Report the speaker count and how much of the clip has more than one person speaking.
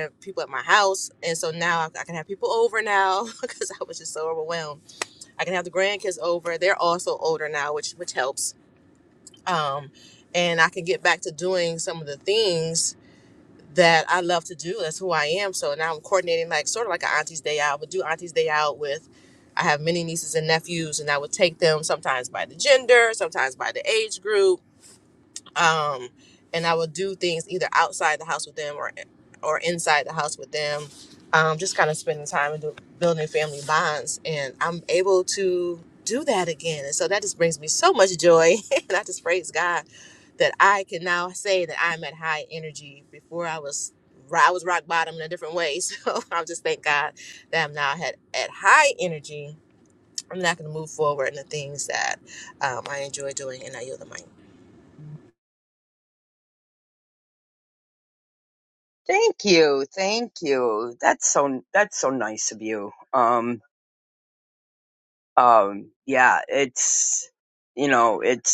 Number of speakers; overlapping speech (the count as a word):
two, no overlap